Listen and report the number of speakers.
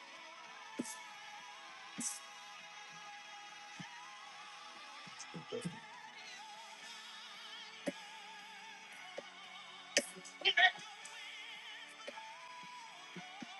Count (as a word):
zero